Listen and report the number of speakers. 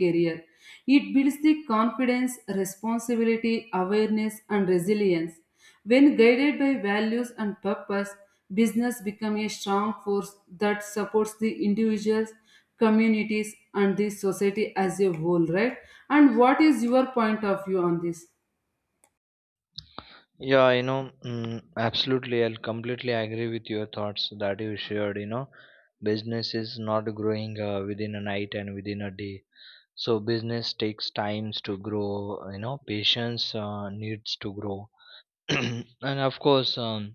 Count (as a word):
two